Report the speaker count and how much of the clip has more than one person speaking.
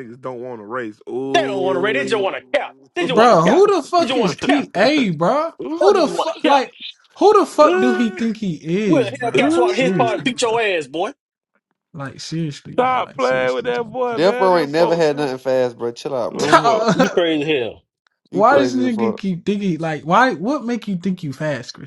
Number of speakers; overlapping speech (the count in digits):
4, about 38%